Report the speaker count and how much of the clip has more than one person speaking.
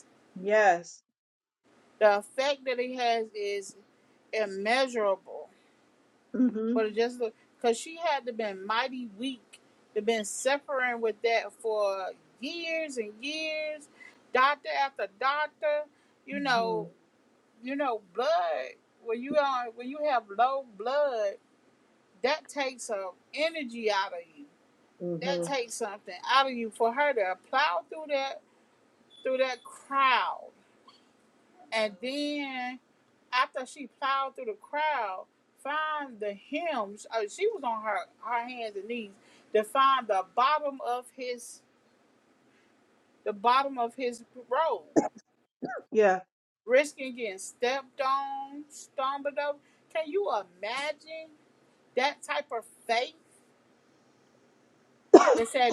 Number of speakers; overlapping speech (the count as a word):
two, about 1%